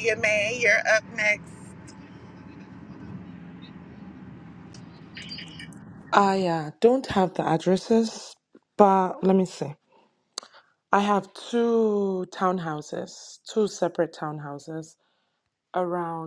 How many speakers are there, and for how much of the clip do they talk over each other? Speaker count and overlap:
2, no overlap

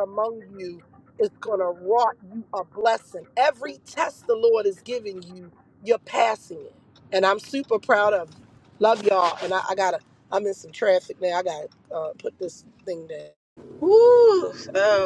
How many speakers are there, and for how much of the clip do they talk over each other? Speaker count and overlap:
2, no overlap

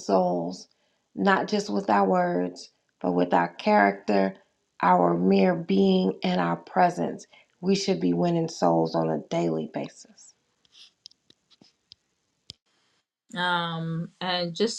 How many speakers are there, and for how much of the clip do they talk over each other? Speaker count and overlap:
2, no overlap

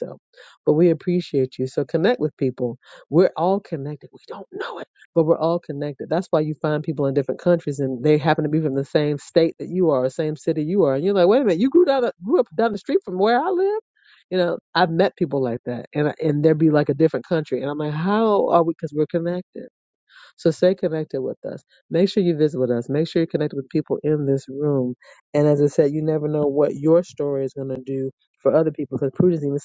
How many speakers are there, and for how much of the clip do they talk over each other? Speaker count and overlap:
1, no overlap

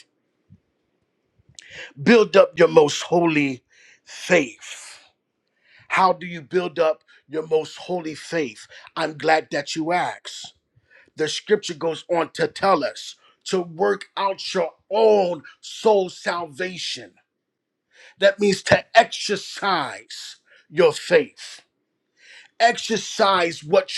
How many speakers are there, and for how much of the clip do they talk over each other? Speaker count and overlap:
1, no overlap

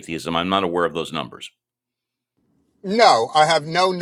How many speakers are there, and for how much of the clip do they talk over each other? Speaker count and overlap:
2, no overlap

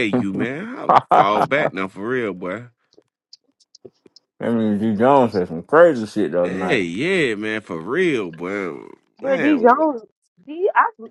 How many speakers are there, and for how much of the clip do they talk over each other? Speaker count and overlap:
3, about 9%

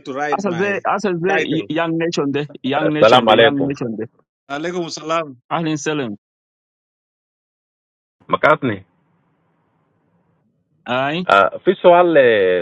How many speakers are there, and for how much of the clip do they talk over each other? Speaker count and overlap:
3, about 14%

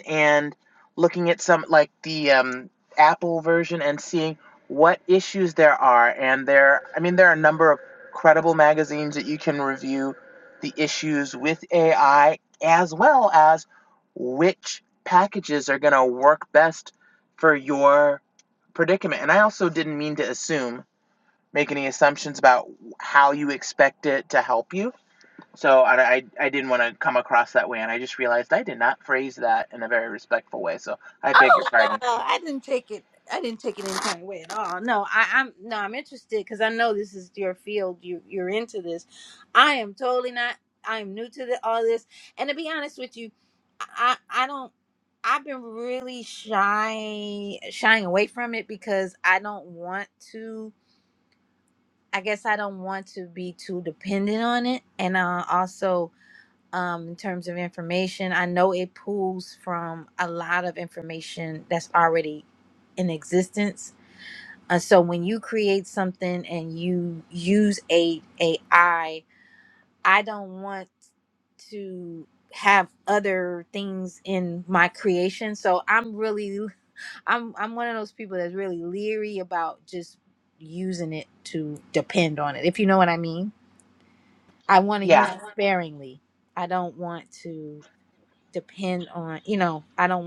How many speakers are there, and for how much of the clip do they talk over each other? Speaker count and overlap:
2, about 1%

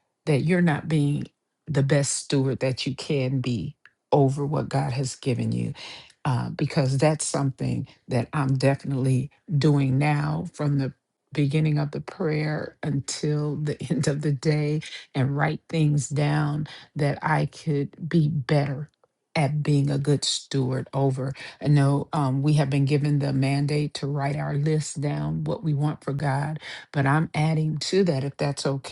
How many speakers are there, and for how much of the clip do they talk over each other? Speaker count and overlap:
1, no overlap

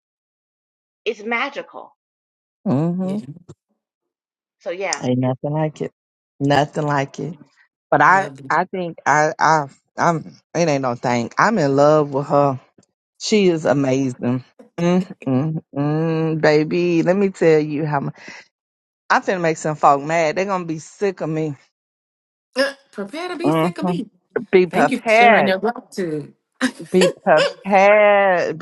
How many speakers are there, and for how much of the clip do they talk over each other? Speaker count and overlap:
3, about 6%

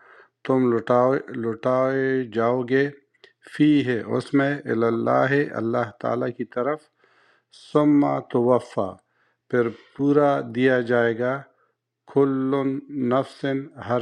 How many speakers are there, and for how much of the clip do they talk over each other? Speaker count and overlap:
1, no overlap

